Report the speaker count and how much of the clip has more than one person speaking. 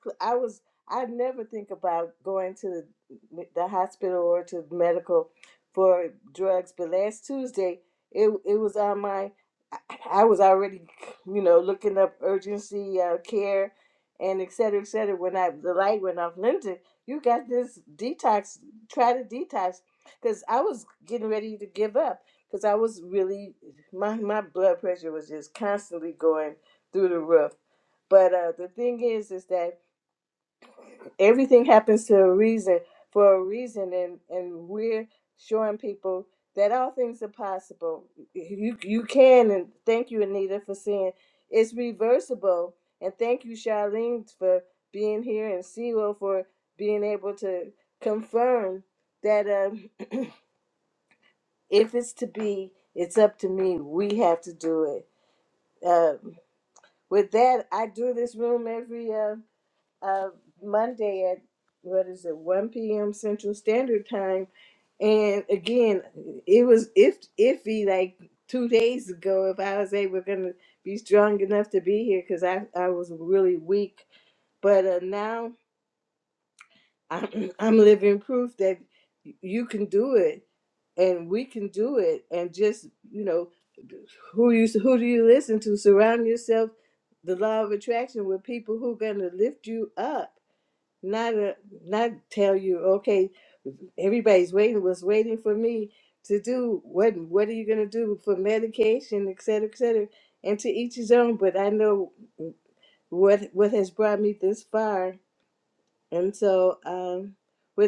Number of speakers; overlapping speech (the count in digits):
1, no overlap